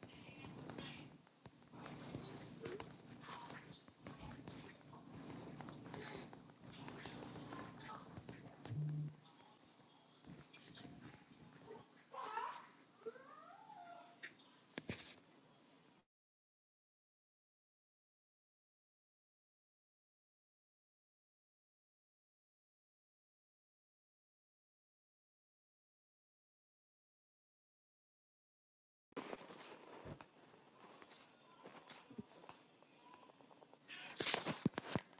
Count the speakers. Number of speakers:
0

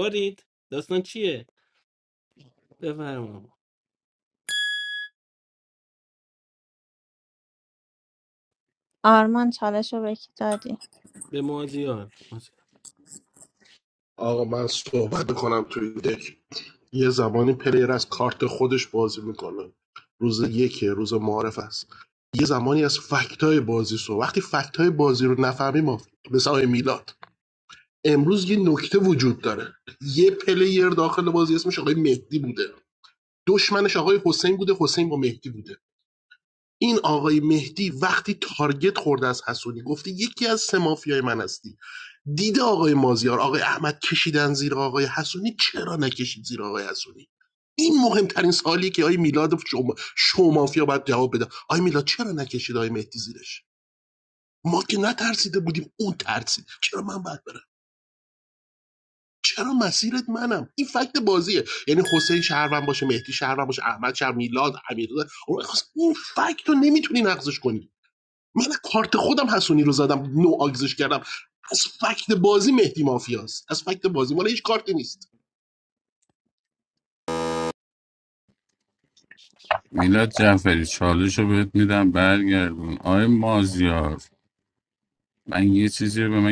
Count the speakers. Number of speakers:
4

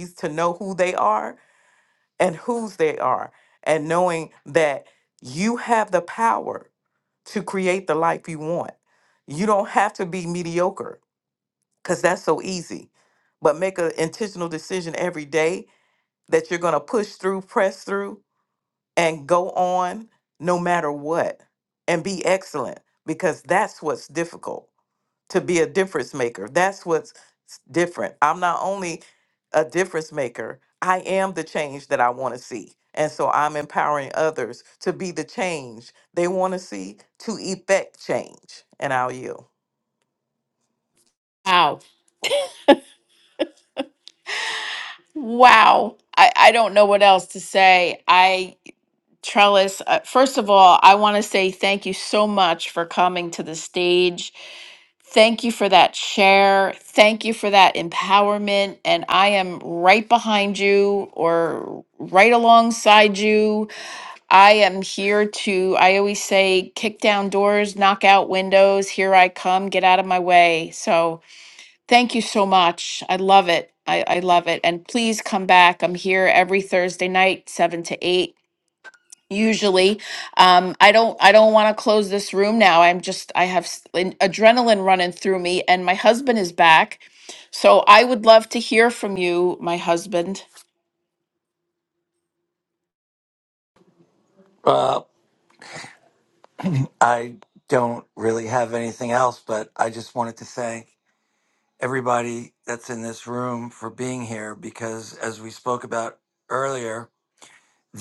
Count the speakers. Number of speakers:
3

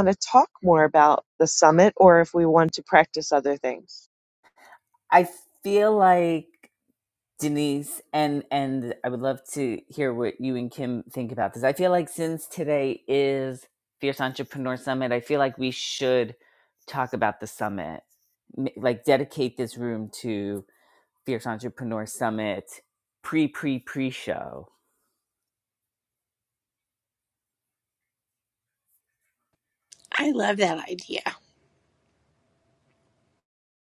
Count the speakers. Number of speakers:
3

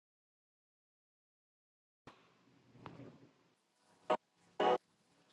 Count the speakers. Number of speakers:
0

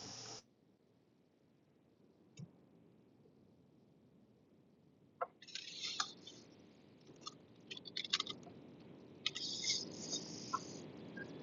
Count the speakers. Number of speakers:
0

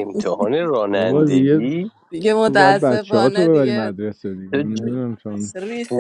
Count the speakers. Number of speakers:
3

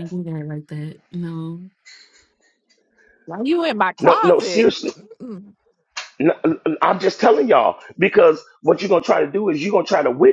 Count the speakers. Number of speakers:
3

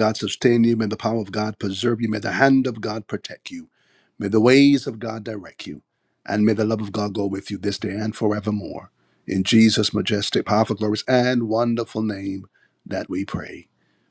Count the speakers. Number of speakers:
1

